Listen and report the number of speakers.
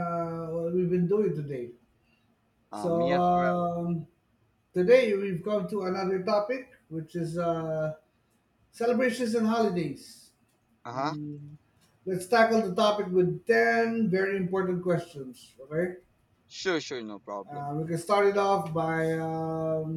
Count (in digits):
2